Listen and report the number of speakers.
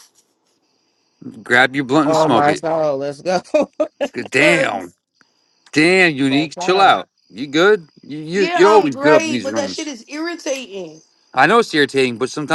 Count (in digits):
3